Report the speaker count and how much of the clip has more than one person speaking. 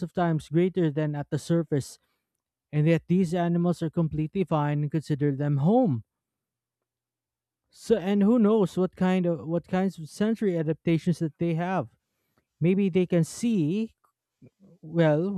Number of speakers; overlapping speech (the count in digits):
1, no overlap